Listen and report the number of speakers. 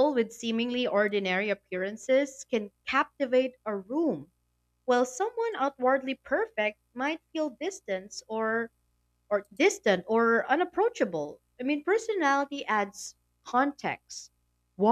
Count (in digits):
1